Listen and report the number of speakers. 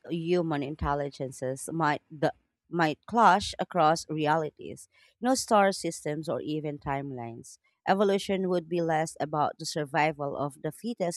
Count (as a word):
one